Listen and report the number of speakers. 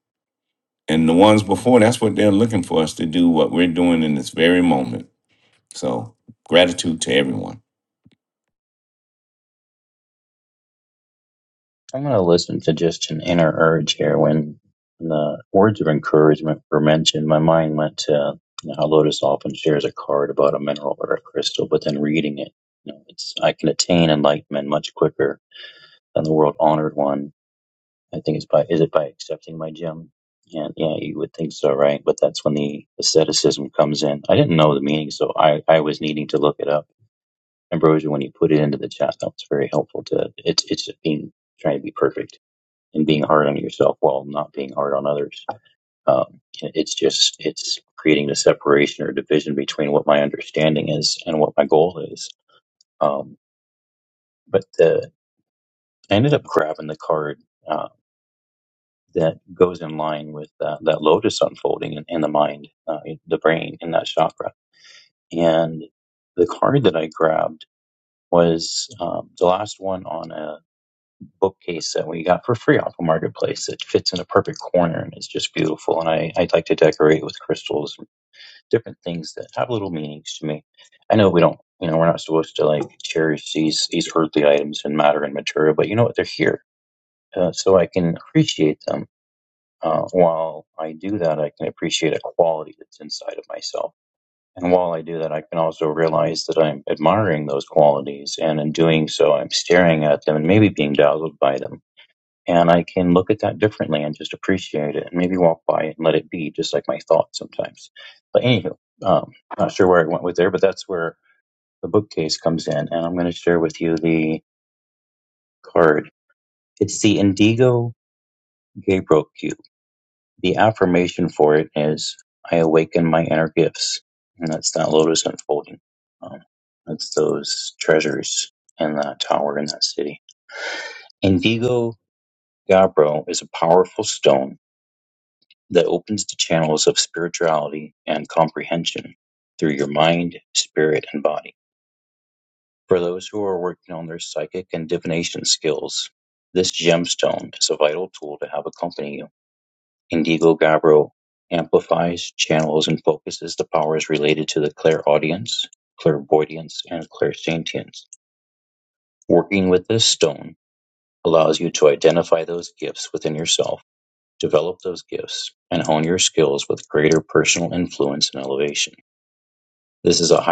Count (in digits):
2